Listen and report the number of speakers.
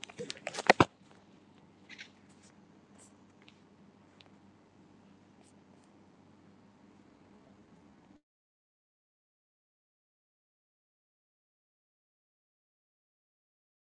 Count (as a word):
zero